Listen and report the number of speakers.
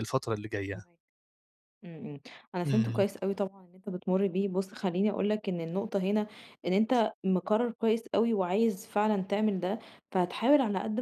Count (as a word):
two